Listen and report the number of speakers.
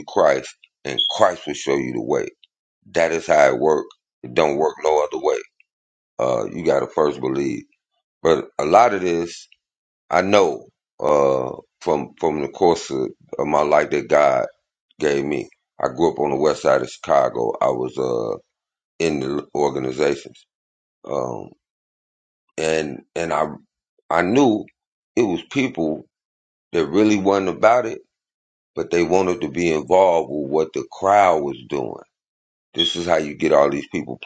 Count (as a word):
one